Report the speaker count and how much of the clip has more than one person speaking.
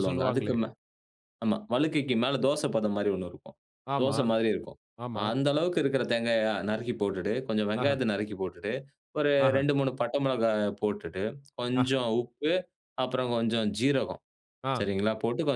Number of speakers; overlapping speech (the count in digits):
2, about 10%